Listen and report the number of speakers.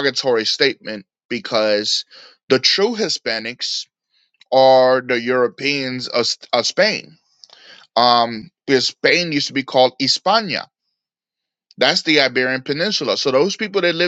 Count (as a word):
one